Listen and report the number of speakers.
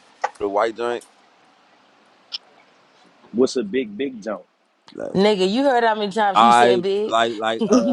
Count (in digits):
3